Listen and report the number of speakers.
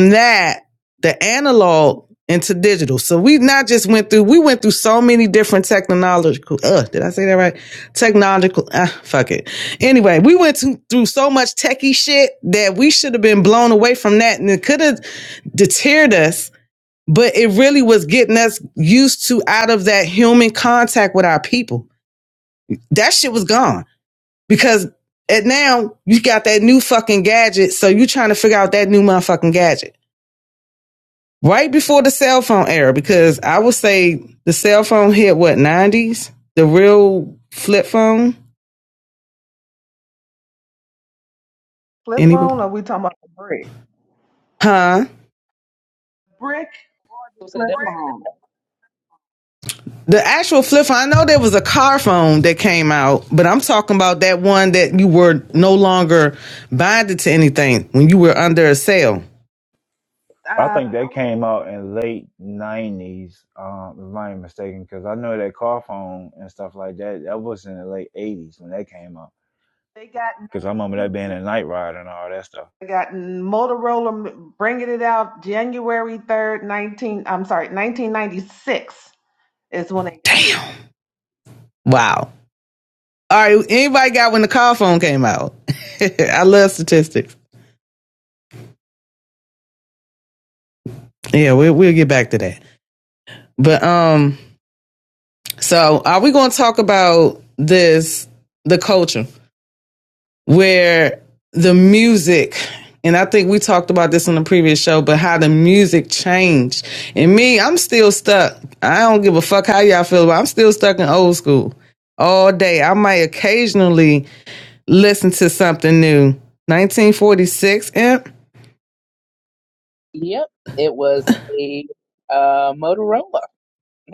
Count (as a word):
four